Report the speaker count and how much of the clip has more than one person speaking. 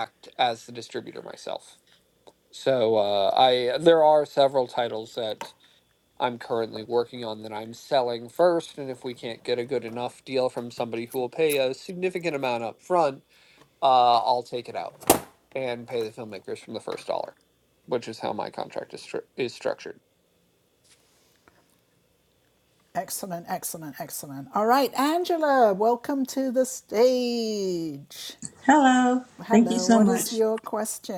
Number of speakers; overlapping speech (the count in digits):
3, about 3%